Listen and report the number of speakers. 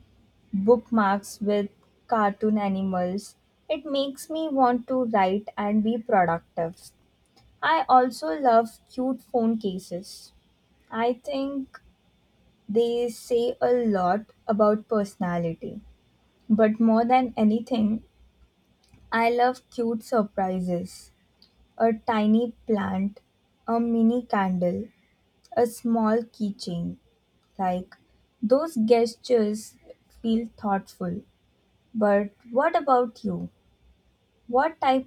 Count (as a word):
one